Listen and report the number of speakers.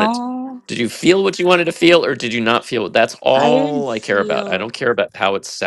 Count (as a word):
two